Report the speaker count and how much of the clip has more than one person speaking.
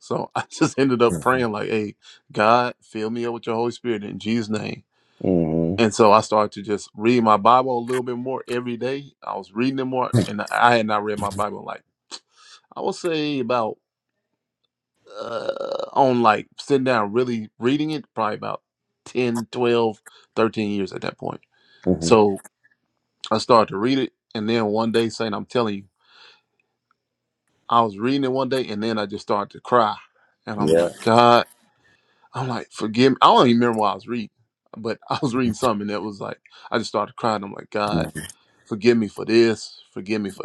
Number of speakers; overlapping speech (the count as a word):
two, about 1%